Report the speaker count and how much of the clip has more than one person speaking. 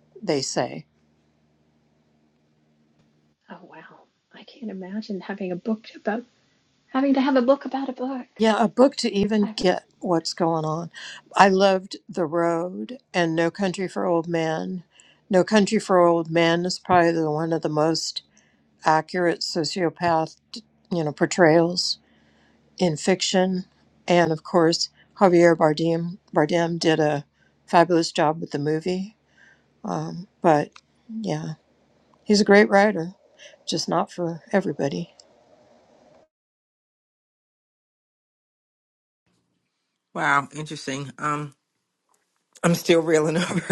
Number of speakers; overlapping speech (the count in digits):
3, about 1%